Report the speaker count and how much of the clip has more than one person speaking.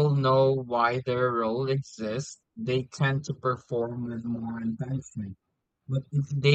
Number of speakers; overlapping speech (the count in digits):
1, no overlap